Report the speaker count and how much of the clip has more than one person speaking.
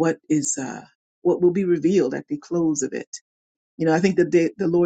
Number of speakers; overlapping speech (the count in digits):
1, no overlap